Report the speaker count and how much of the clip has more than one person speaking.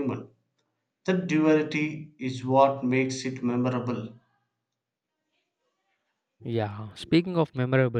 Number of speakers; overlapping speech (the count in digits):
2, no overlap